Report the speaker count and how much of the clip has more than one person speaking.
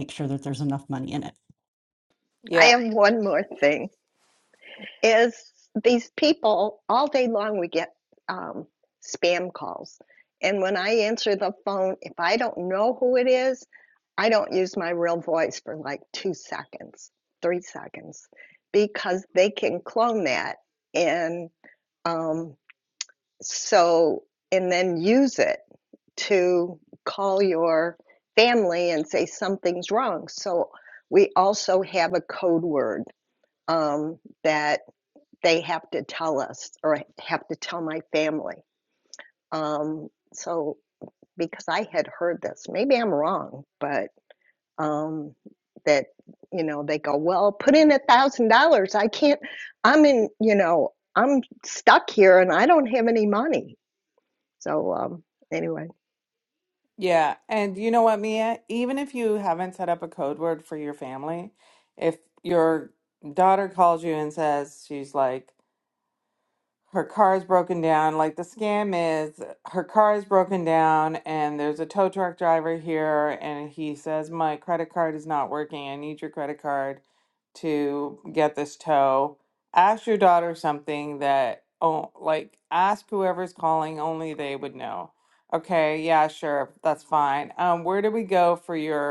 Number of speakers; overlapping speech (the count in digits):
3, under 1%